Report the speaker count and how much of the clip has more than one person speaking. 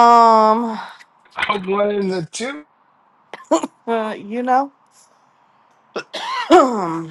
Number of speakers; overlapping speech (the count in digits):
2, no overlap